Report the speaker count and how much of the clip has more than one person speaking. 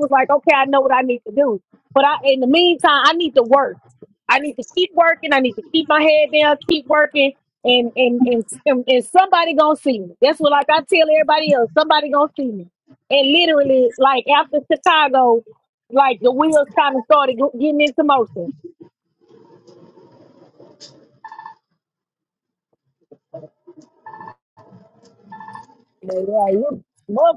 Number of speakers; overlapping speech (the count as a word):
one, no overlap